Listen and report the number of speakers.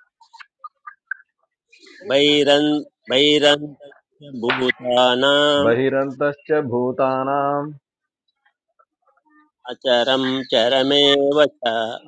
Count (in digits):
2